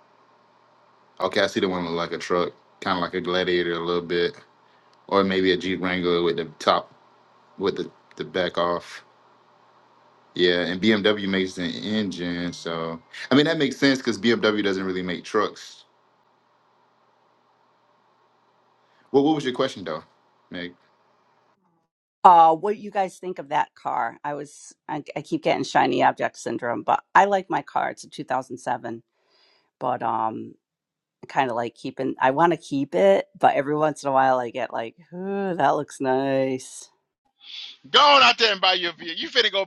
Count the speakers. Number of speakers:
3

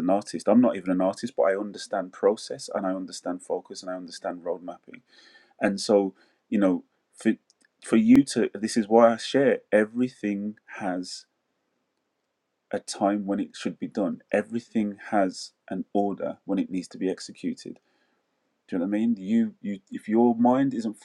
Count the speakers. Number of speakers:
1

